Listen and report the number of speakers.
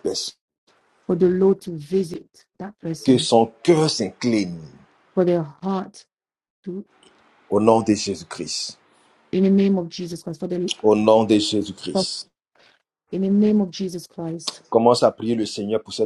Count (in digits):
2